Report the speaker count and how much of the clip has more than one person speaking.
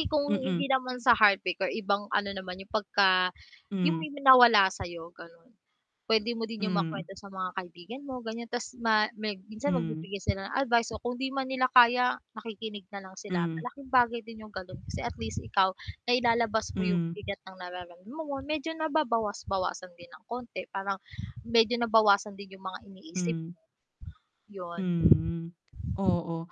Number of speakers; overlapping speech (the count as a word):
two, about 9%